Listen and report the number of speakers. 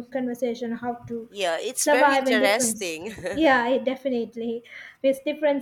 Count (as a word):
two